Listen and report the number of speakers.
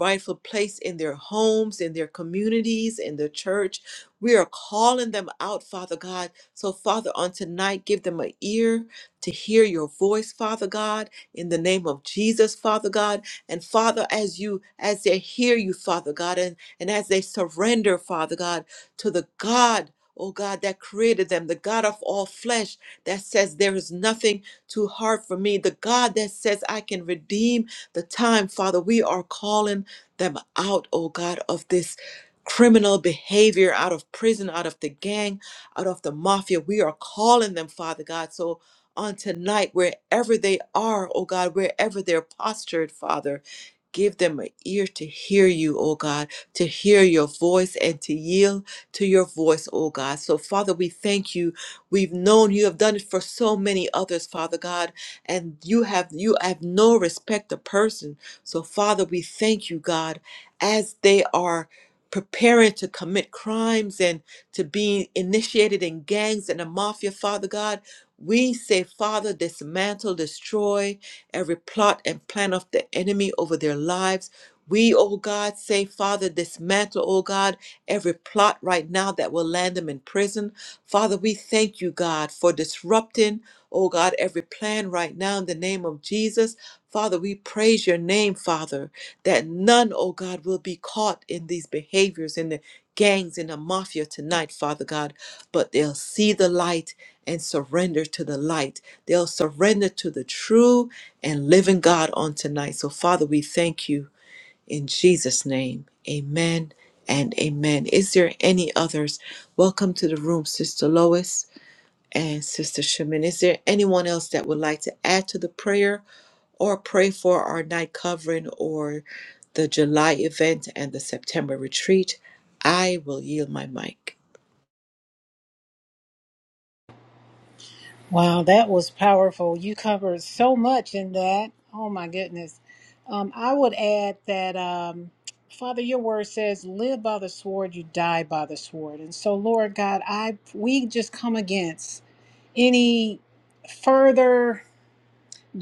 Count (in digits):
2